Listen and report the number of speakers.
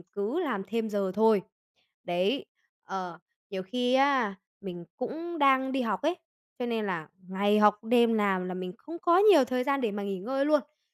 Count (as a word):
one